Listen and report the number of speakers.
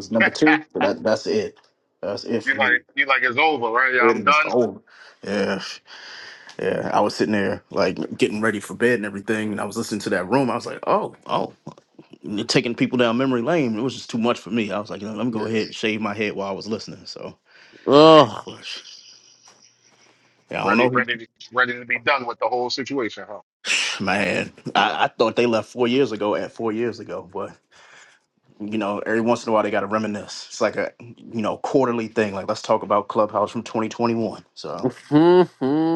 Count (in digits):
3